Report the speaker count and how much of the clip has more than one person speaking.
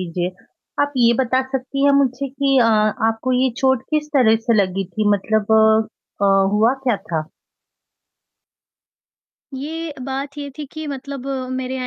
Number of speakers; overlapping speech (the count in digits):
2, no overlap